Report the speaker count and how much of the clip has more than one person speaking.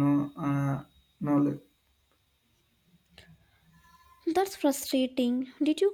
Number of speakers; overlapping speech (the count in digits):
2, no overlap